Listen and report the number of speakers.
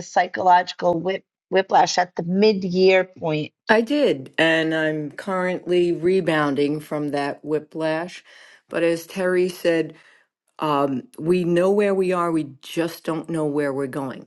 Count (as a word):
two